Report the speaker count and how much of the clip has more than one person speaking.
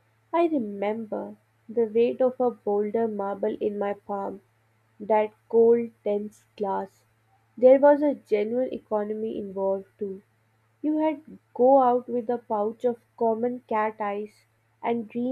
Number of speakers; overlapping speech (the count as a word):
one, no overlap